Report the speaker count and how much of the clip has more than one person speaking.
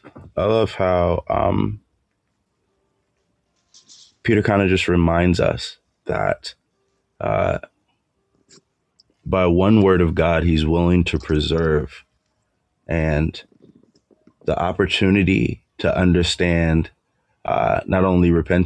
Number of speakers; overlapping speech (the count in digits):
1, no overlap